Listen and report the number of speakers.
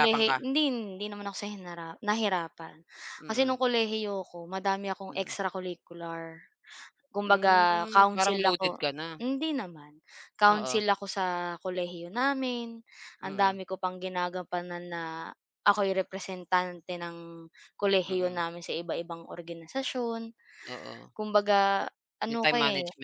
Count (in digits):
2